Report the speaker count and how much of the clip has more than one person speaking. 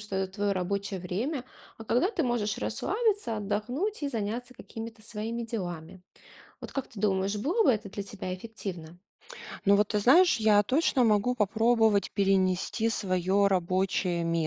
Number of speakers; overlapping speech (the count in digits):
2, no overlap